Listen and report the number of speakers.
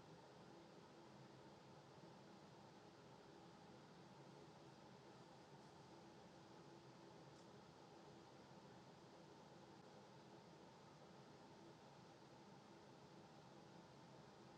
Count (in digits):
0